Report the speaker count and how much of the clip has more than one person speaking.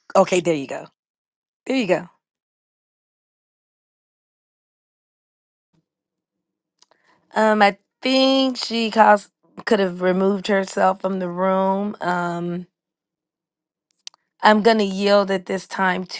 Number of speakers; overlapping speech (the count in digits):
1, no overlap